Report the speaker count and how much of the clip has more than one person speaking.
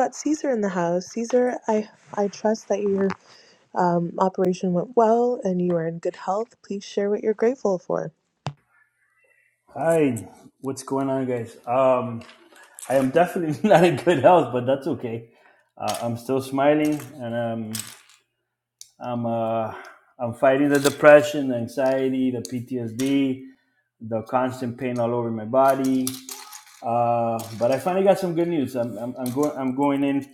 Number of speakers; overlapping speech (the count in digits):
2, no overlap